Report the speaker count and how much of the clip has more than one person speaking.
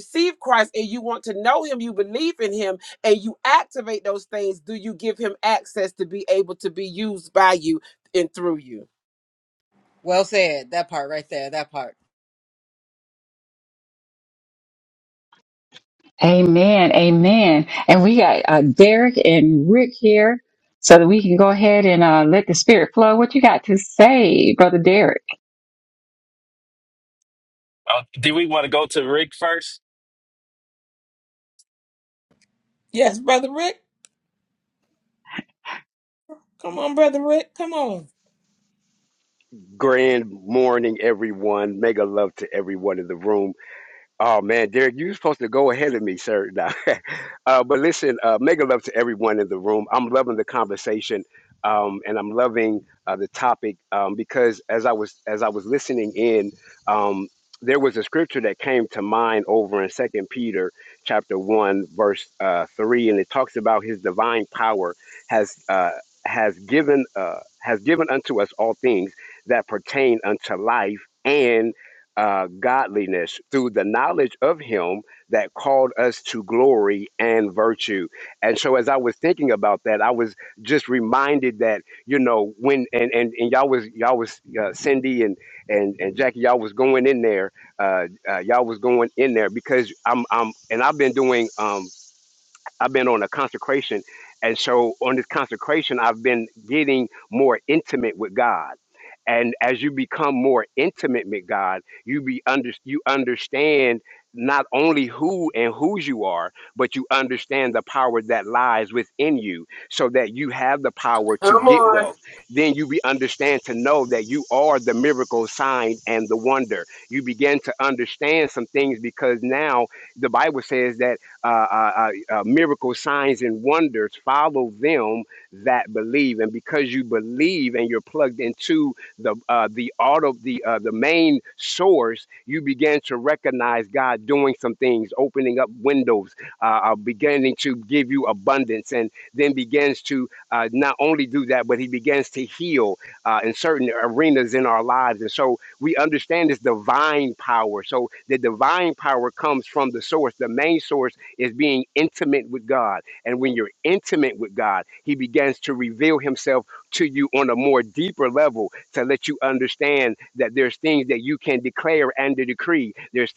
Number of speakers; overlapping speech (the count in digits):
6, under 1%